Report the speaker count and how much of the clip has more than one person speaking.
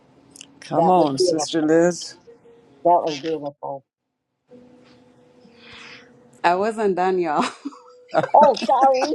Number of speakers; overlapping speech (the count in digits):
3, about 8%